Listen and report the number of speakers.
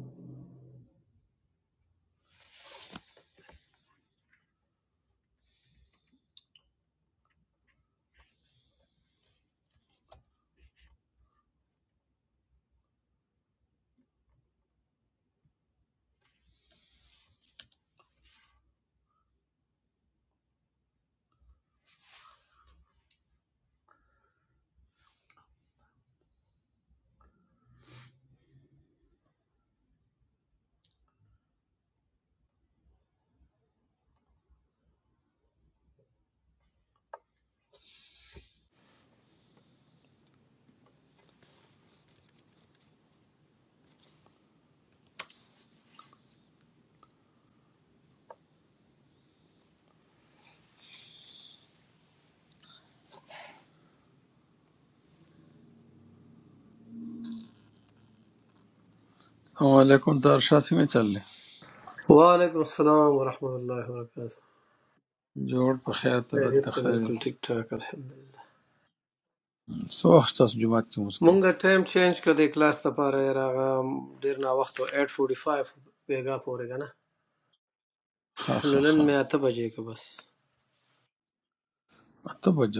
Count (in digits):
2